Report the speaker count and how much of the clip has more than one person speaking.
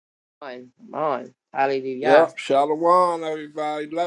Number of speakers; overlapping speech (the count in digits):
2, about 7%